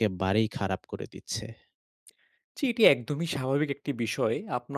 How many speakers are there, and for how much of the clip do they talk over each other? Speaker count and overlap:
2, no overlap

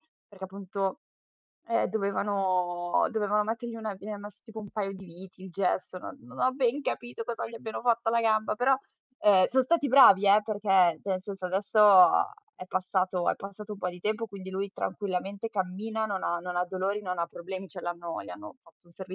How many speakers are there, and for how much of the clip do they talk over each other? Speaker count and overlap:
1, no overlap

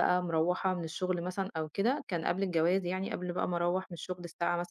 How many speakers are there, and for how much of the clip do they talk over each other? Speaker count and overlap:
1, no overlap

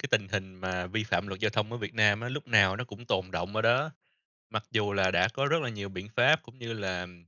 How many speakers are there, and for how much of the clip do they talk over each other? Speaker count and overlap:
1, no overlap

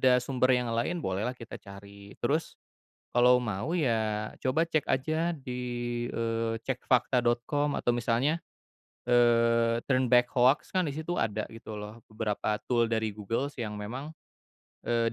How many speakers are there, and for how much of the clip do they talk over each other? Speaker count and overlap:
1, no overlap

